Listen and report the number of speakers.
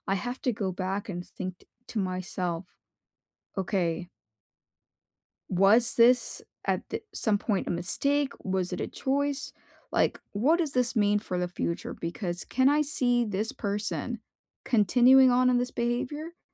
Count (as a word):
one